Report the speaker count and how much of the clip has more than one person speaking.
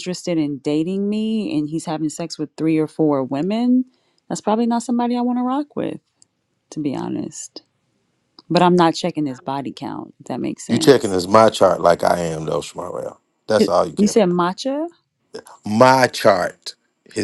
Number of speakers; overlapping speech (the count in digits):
2, about 4%